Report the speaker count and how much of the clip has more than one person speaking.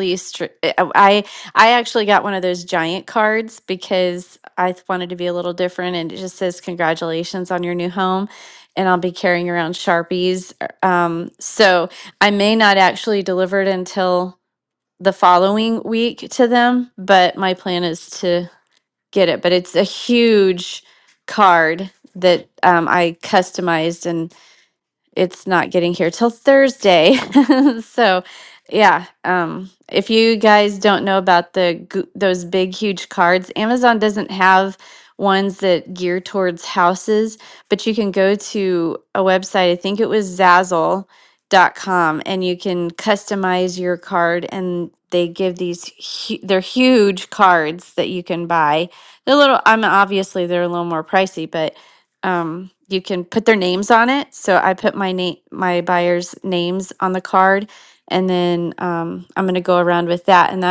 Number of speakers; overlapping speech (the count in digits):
1, no overlap